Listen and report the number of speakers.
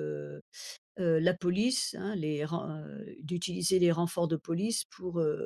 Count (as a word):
one